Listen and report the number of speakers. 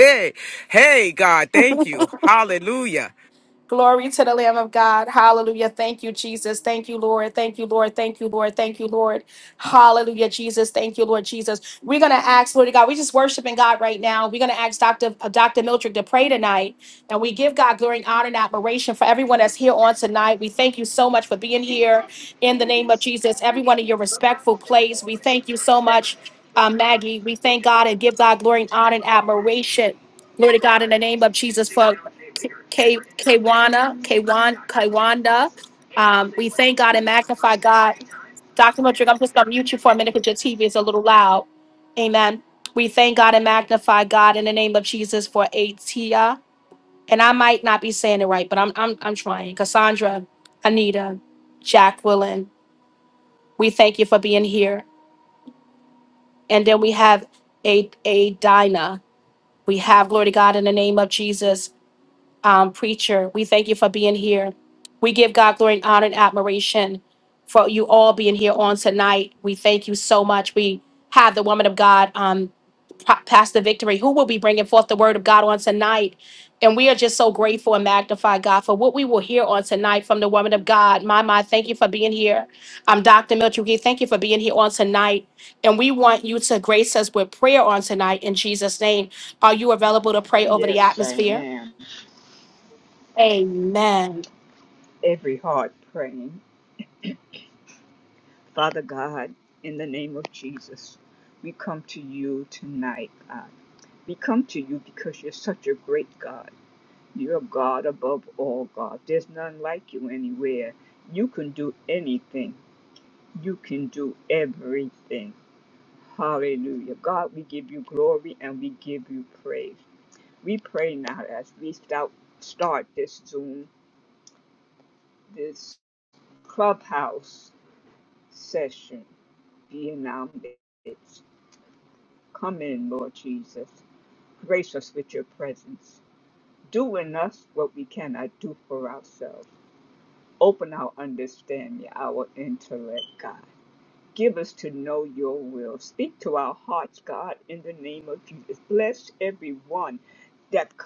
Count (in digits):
3